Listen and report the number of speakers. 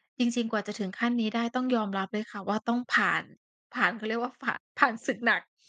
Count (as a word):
one